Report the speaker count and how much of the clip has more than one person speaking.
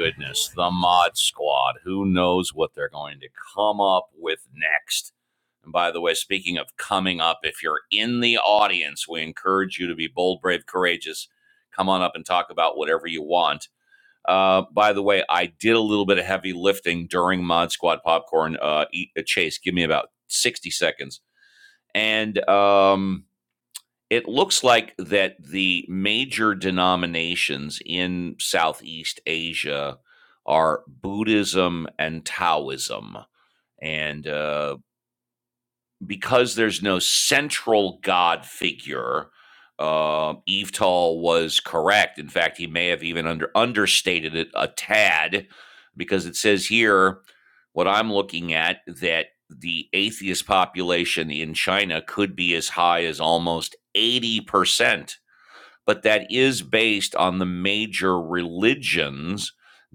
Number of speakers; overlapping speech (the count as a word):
one, no overlap